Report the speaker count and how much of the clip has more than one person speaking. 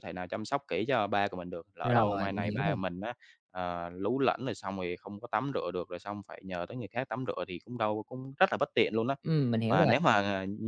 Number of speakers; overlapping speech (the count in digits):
2, about 11%